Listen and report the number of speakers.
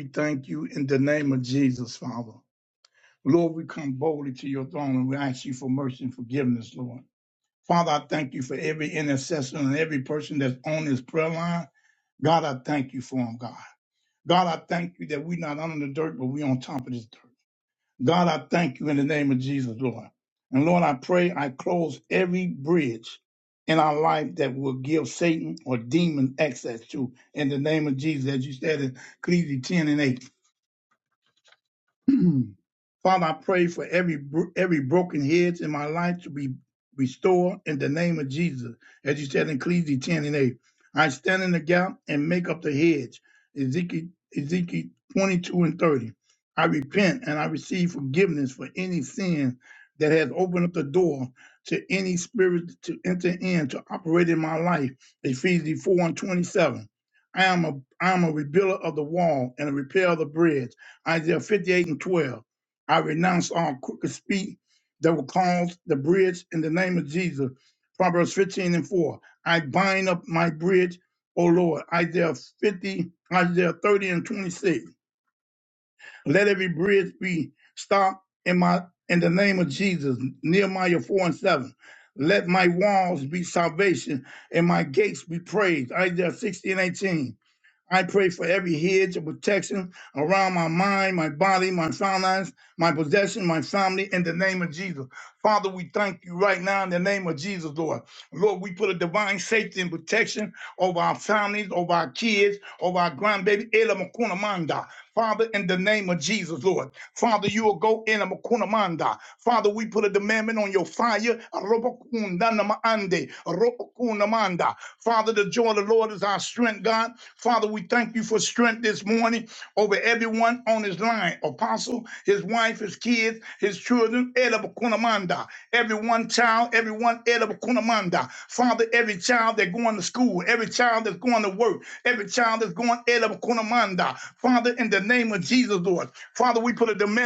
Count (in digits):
1